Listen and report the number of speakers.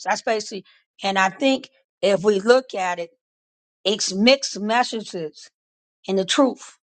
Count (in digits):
1